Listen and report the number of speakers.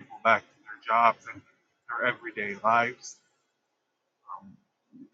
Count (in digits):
1